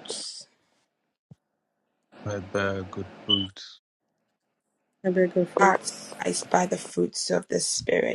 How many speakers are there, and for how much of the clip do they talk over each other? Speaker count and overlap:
3, about 7%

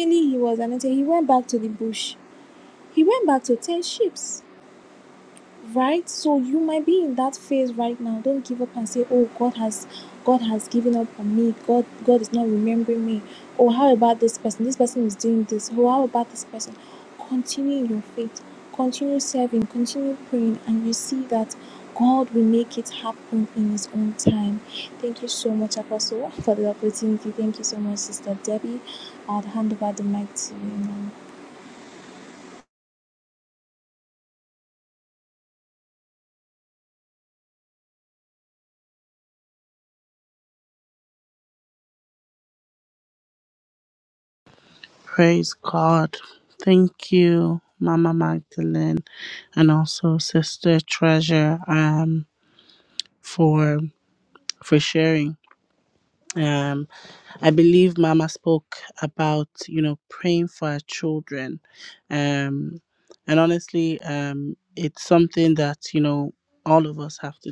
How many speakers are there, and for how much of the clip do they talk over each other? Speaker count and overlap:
2, no overlap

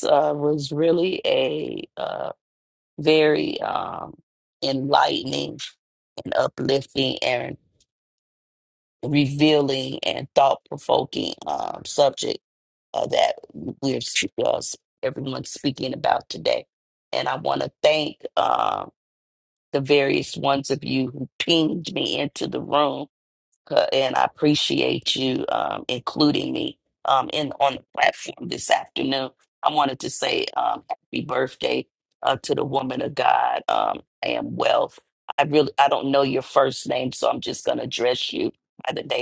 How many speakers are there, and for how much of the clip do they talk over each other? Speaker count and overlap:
1, no overlap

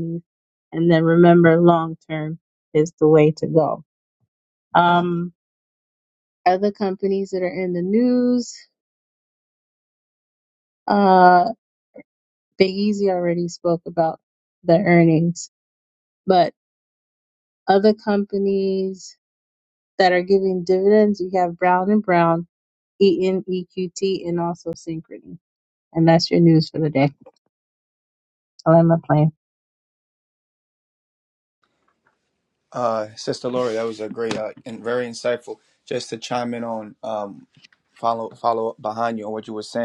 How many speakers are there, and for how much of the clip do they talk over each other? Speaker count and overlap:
2, no overlap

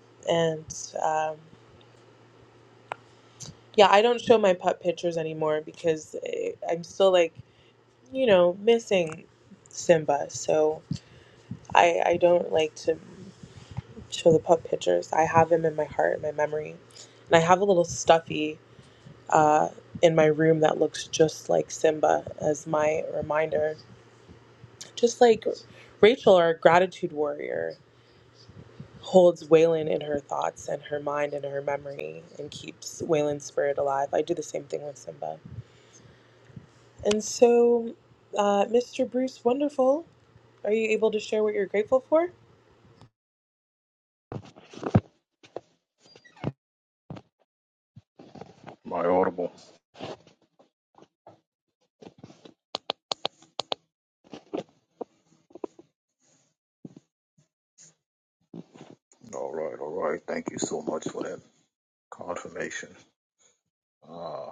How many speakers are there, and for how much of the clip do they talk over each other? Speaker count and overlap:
2, no overlap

